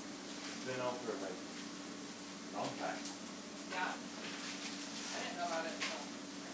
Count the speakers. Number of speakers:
2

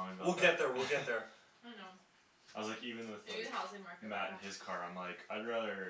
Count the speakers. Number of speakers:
3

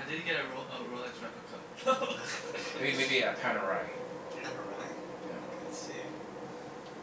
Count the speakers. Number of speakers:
3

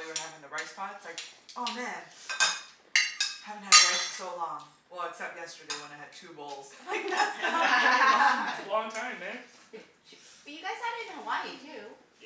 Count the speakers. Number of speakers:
3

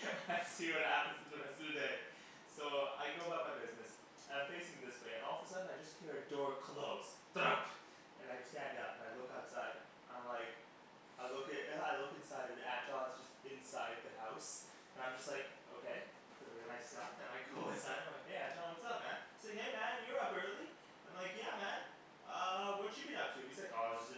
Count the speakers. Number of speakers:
1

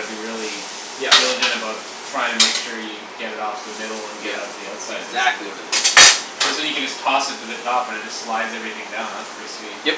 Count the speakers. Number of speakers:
2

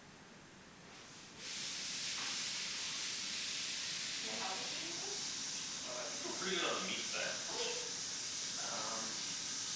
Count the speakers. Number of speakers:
2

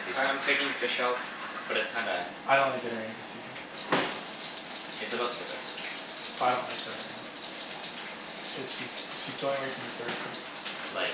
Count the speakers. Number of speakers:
3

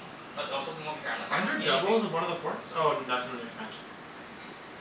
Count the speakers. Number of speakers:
2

